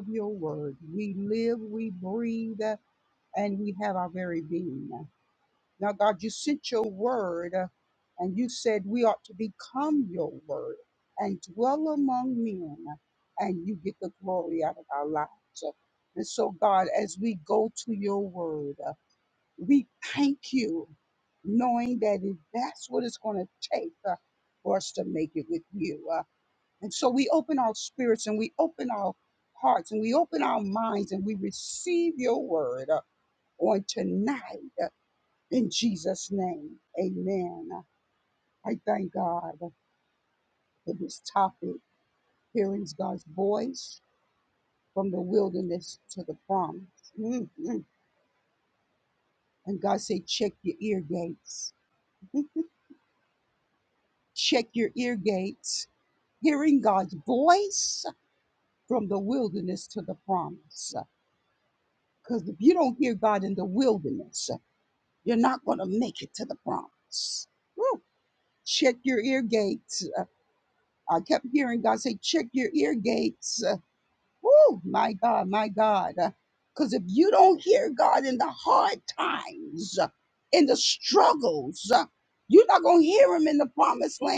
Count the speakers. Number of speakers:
1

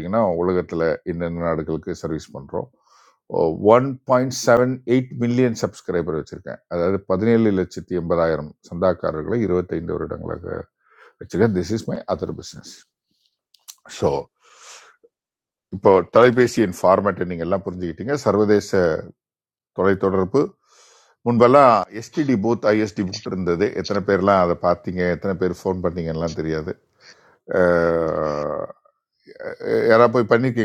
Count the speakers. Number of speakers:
1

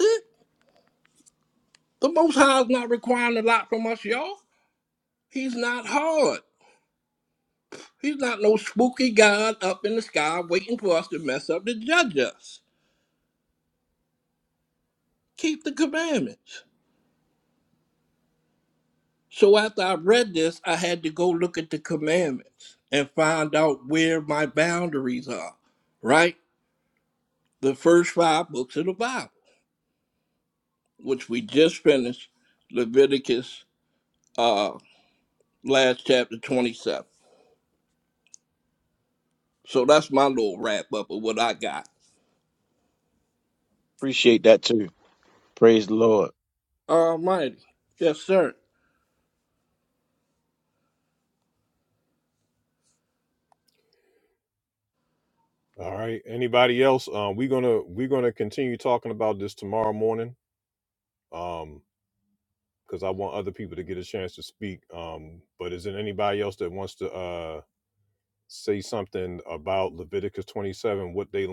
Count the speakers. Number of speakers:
3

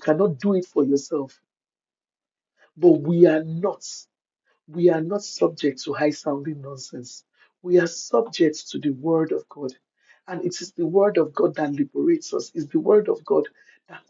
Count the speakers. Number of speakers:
1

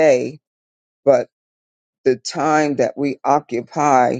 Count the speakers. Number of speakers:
1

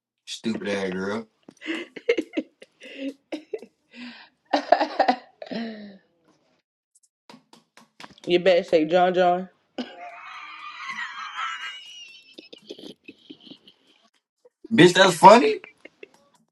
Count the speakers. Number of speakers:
2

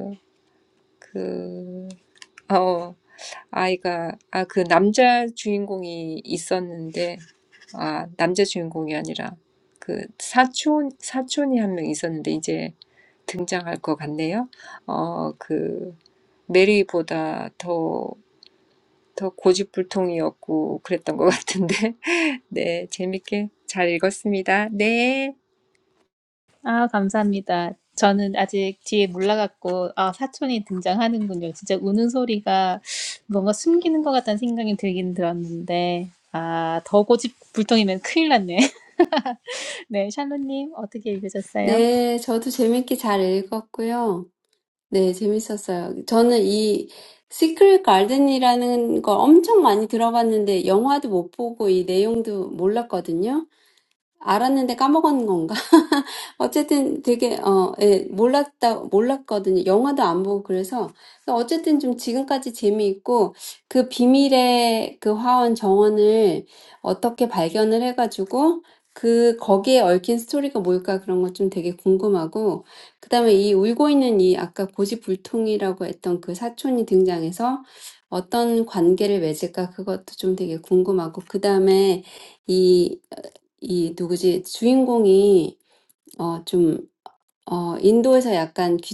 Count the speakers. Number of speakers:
3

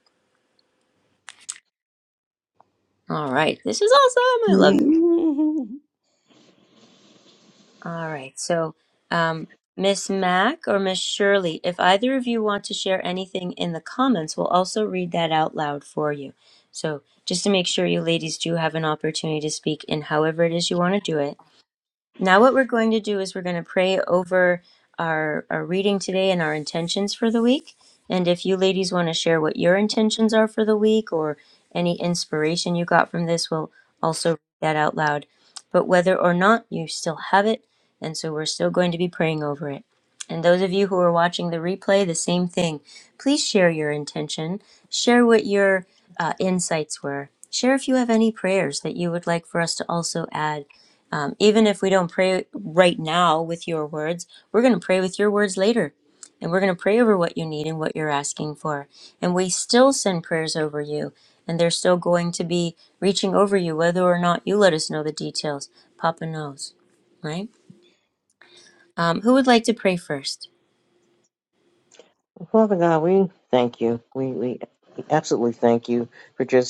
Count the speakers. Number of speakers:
3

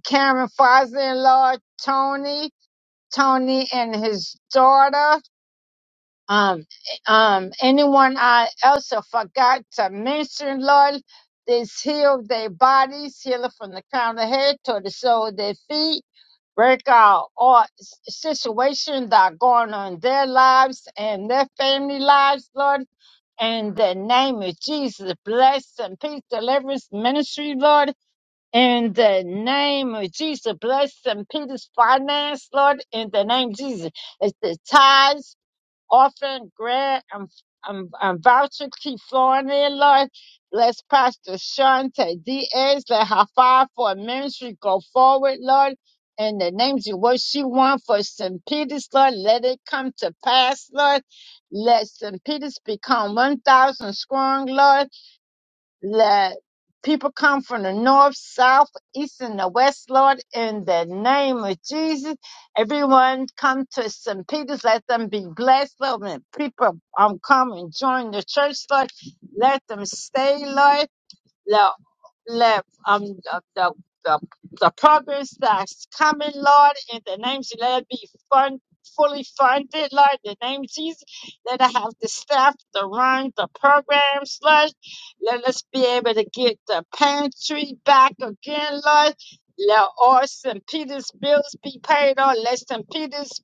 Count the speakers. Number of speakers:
1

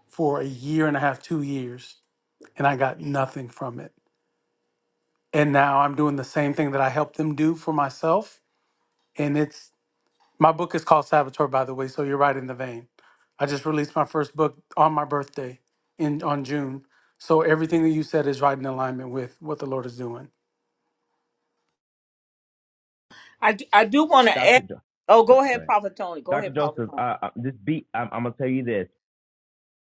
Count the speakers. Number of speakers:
3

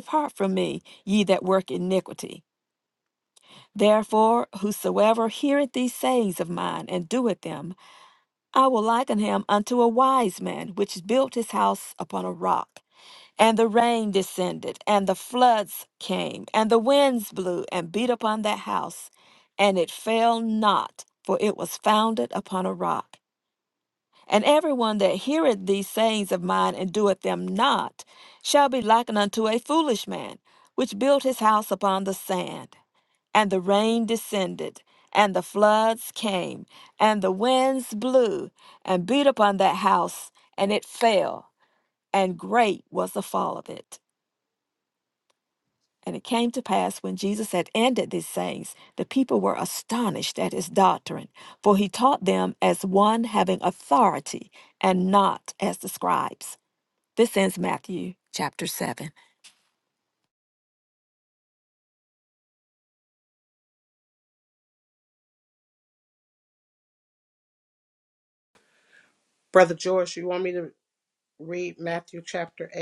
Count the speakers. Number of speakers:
2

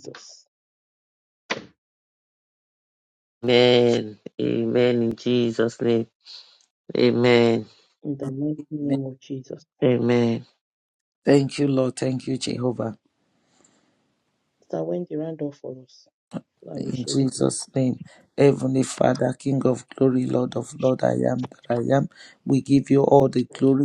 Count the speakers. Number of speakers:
3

